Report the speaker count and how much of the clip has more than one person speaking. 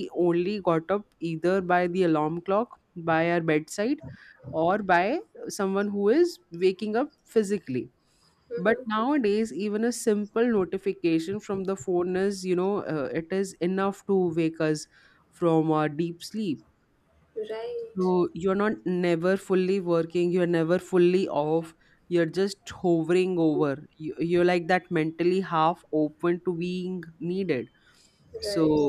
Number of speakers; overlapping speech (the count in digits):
2, about 2%